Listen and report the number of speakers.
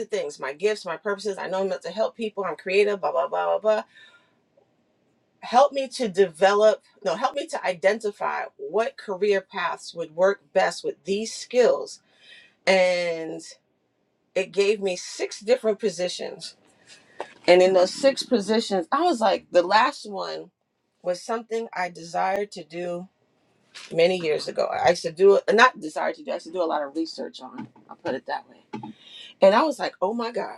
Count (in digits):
1